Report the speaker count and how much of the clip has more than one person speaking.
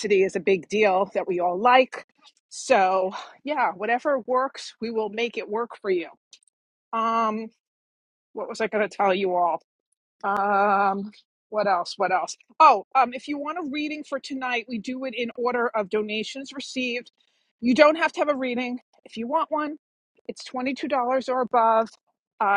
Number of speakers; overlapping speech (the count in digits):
1, no overlap